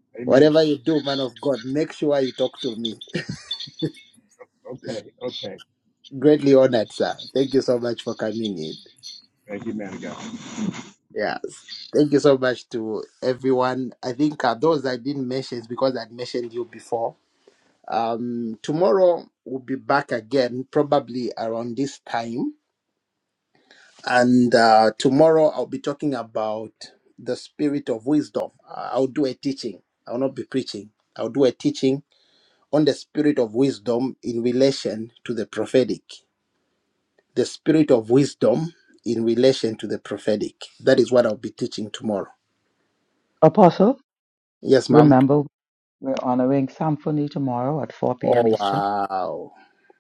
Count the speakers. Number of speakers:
3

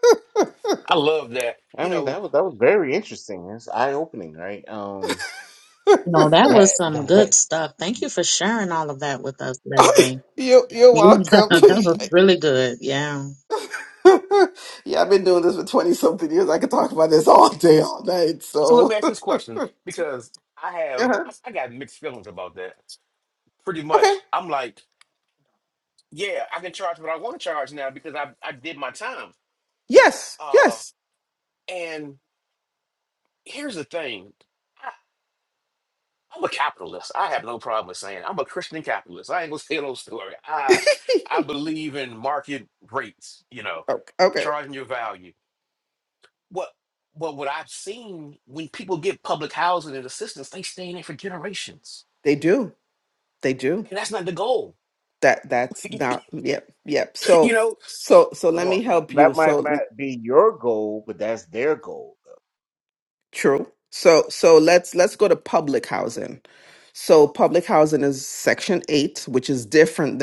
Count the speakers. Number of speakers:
4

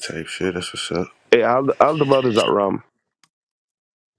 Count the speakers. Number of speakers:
2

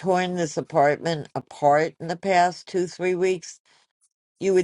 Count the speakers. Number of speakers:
1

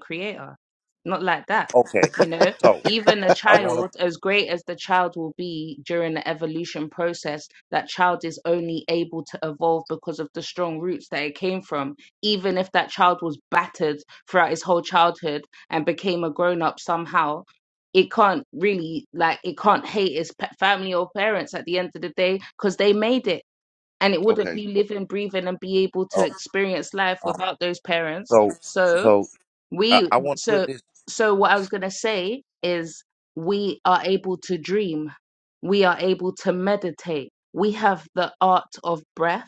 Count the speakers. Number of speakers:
2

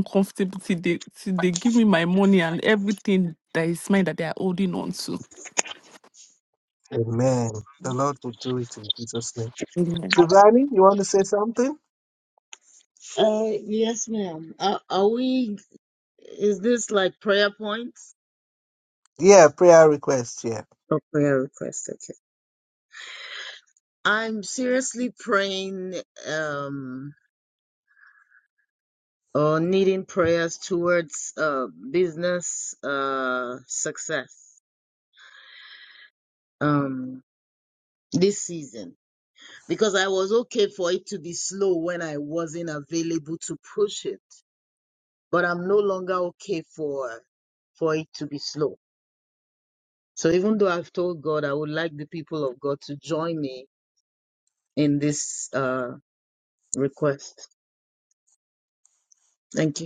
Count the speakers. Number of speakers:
3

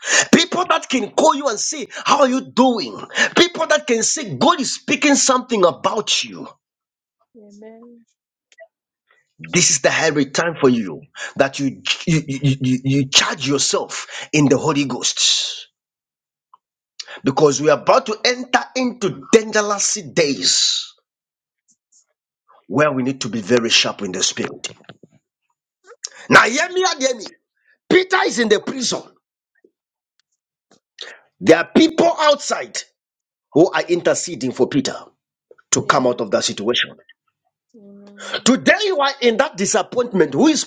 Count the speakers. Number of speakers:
2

